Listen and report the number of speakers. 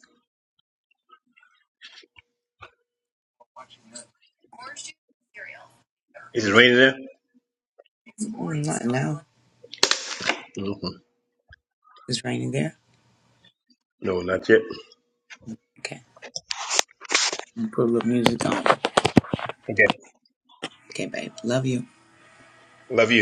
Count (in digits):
2